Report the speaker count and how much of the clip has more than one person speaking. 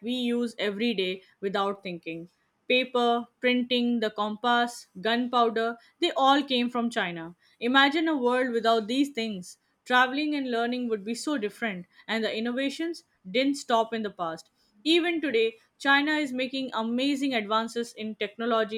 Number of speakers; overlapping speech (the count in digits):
1, no overlap